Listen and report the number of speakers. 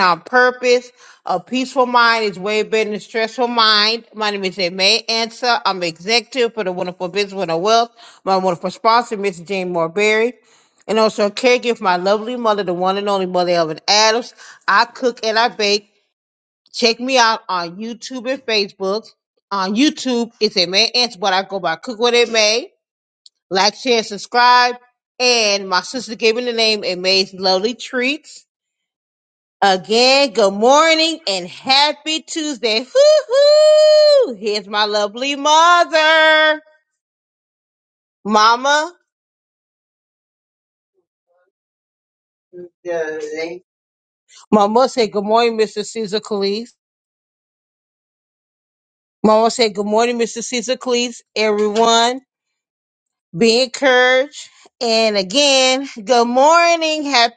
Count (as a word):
one